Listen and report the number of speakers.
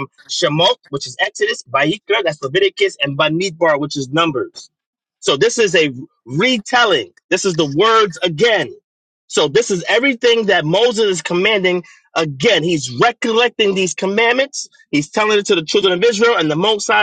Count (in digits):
1